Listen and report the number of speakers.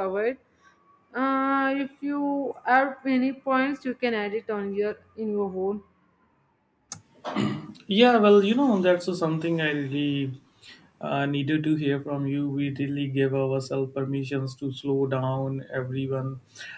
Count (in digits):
2